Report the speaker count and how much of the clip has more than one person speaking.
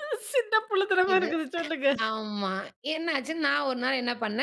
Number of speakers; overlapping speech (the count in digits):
2, about 6%